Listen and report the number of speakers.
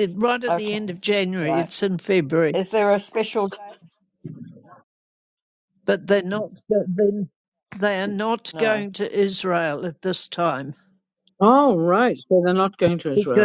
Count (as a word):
three